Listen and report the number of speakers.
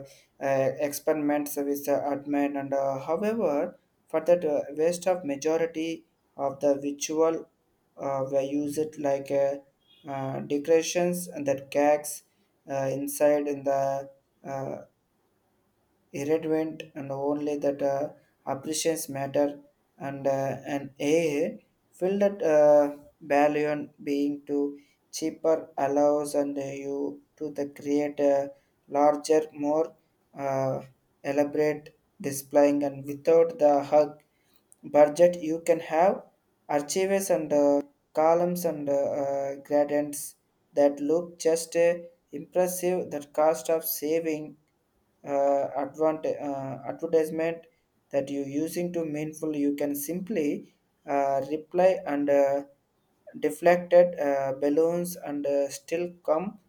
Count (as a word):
one